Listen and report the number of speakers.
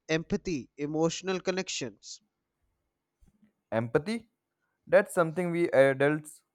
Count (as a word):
two